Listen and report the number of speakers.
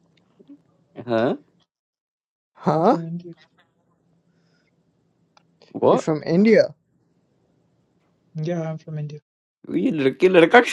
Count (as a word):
three